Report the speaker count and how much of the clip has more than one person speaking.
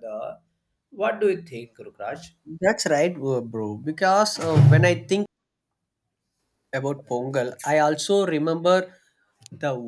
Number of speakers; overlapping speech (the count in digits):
2, no overlap